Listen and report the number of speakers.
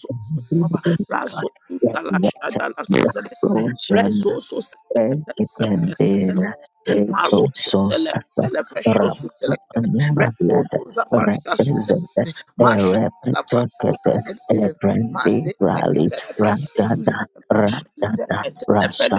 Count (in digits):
2